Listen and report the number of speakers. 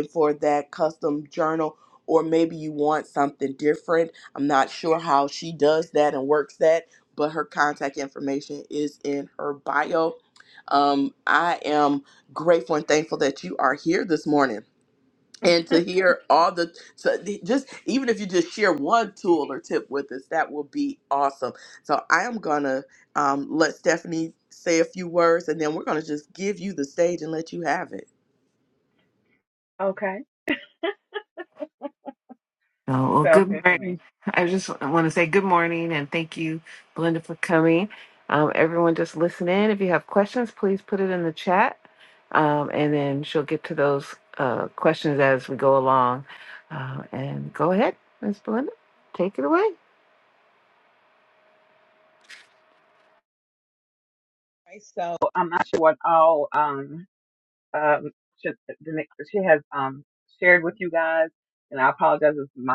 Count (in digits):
3